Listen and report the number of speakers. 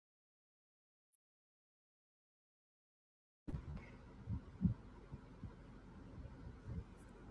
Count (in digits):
0